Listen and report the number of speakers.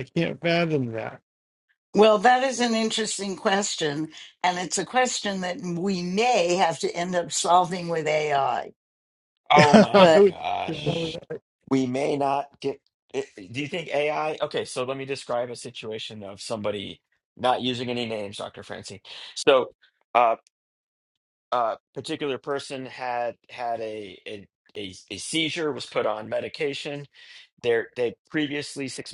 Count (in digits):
3